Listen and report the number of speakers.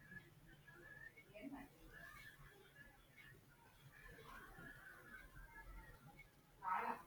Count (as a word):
zero